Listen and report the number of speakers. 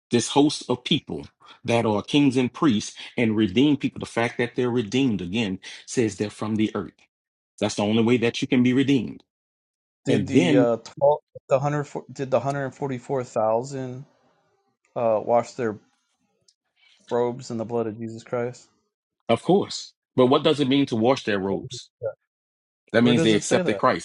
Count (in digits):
2